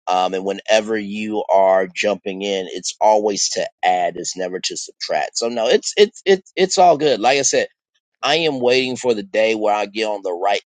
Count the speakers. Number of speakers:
1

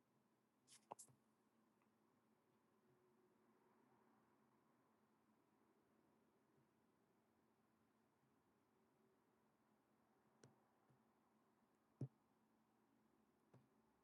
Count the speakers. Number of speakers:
0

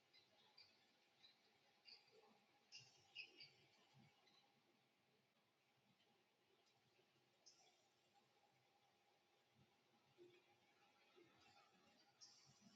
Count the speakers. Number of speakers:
0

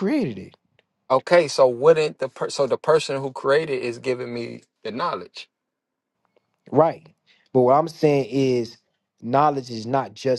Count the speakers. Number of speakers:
2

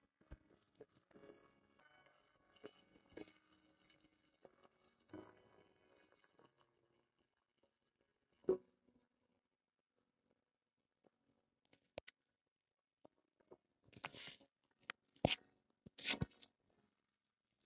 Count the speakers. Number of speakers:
0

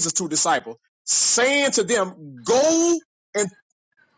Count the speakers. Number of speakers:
1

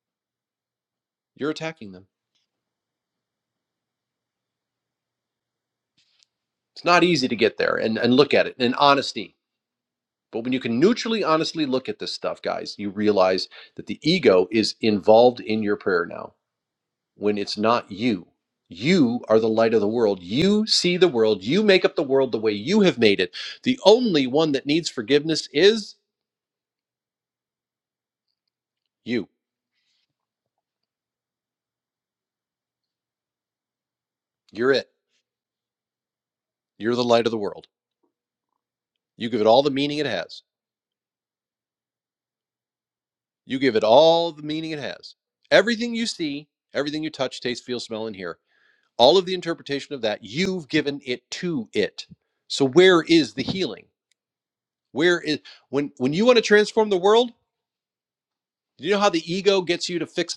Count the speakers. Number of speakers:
1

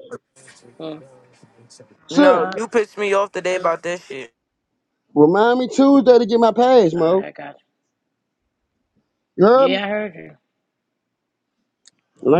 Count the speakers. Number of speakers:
3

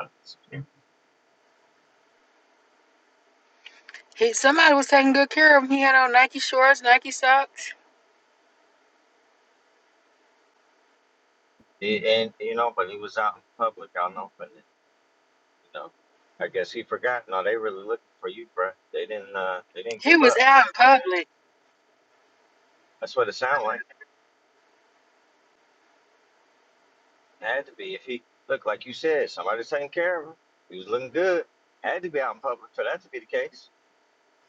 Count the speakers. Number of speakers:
2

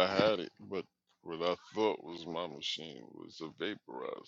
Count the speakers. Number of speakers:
1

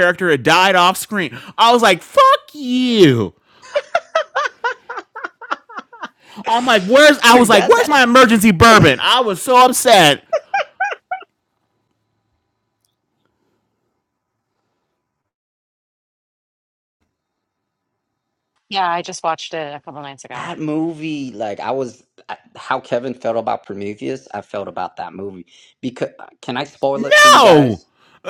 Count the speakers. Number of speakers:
3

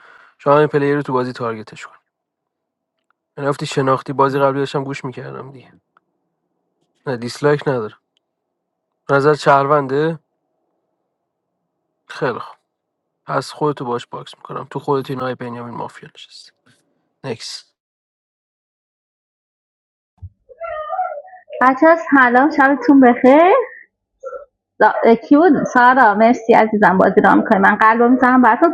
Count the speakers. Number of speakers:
2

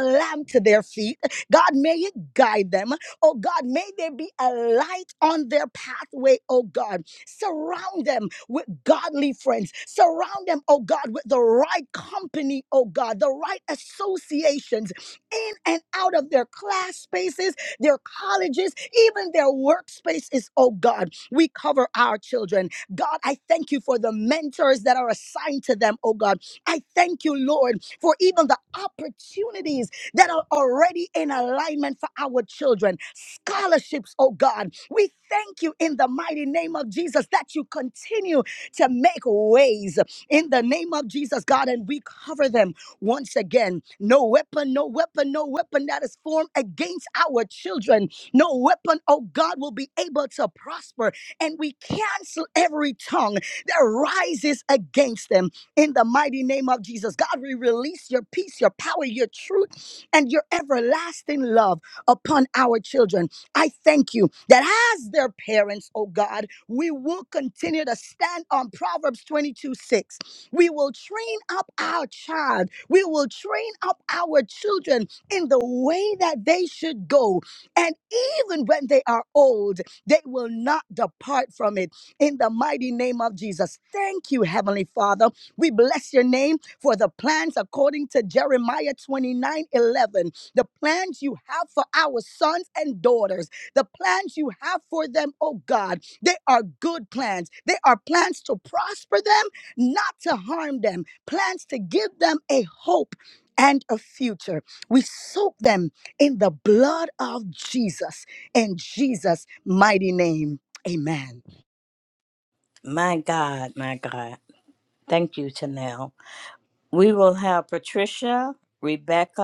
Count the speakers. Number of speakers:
2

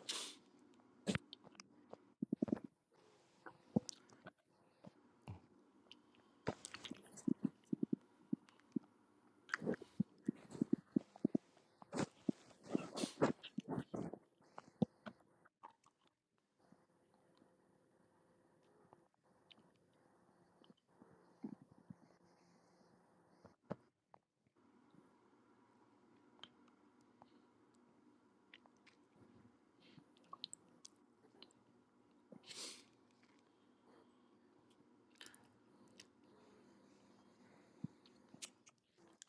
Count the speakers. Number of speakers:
0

